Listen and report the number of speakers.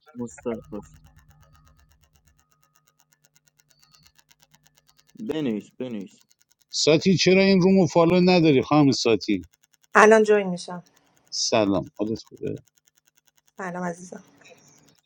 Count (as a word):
three